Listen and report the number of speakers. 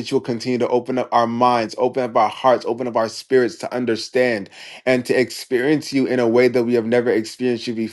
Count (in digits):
1